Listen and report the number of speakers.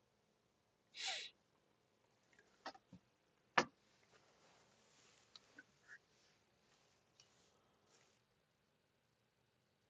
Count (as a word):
zero